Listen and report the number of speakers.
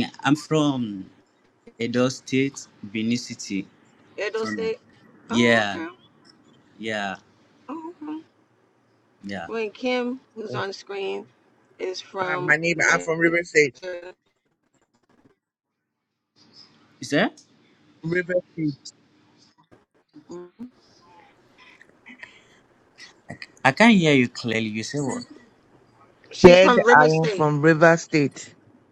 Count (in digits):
3